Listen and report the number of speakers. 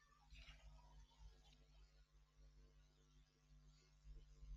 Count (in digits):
0